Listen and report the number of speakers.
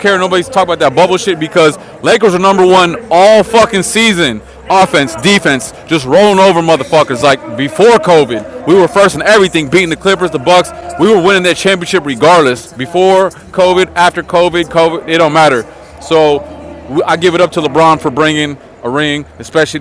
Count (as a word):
one